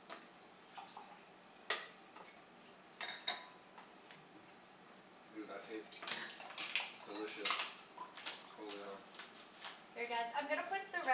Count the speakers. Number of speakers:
2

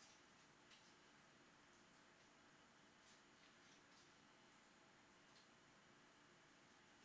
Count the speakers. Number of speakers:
0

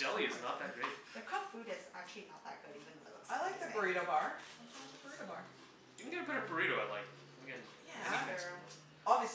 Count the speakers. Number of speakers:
3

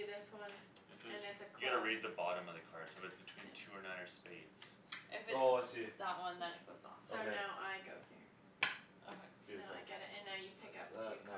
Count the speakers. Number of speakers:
4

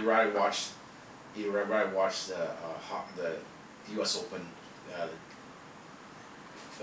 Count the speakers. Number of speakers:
1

